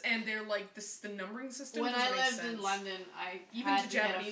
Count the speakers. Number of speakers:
2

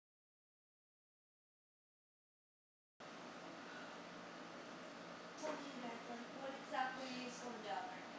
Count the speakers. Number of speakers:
1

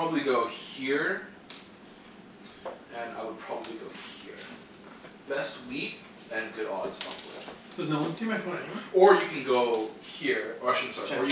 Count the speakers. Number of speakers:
2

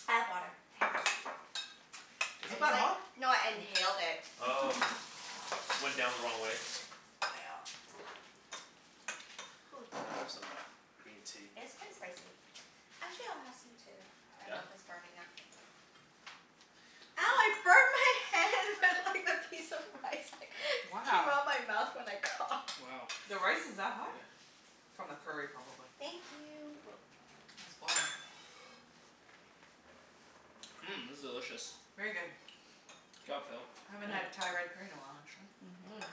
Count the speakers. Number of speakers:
4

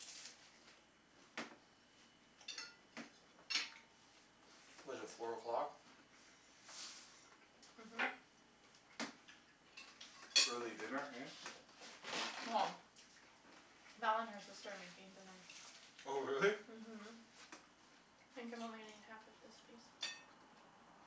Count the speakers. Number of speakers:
3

